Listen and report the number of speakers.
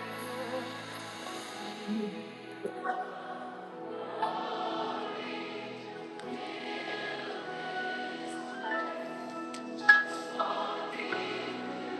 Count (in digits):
0